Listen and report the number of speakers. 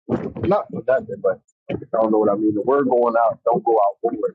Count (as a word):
one